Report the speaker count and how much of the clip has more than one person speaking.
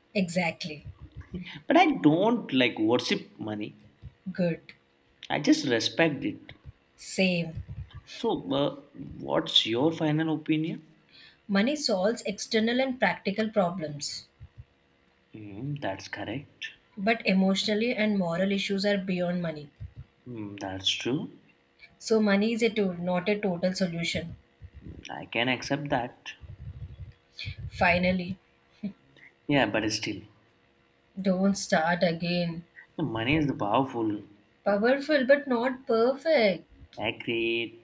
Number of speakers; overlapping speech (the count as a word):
two, no overlap